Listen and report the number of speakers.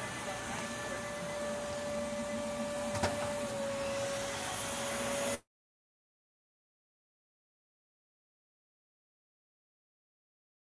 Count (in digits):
0